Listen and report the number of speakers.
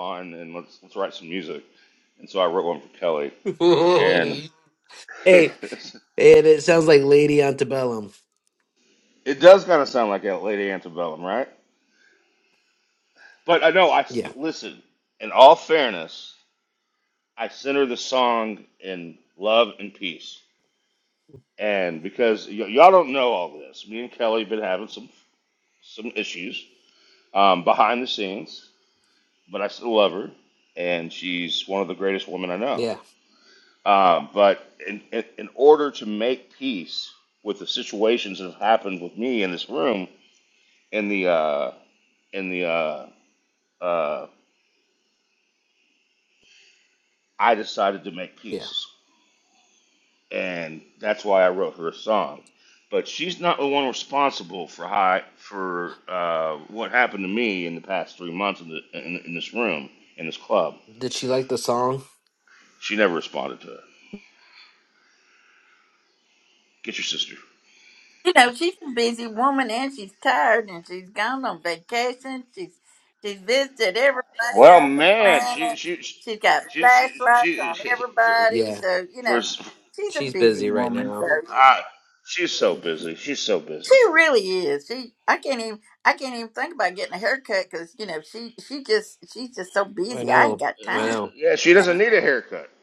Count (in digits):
3